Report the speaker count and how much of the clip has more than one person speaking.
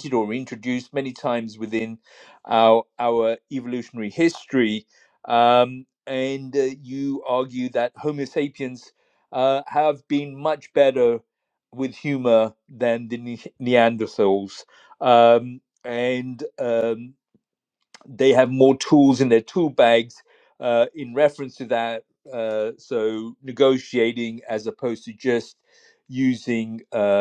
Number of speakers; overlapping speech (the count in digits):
1, no overlap